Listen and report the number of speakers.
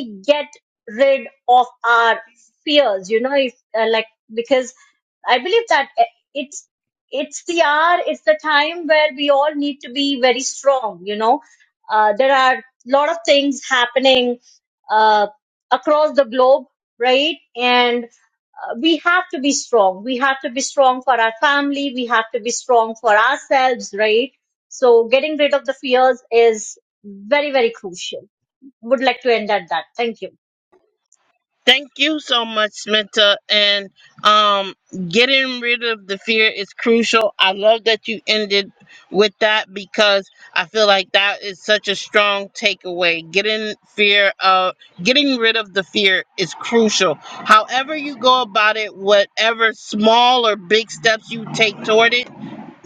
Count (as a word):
two